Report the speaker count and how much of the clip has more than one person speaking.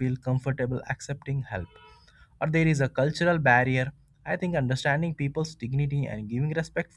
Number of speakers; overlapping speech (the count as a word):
one, no overlap